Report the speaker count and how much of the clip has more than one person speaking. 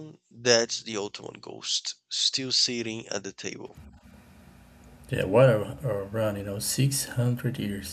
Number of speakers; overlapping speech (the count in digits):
2, no overlap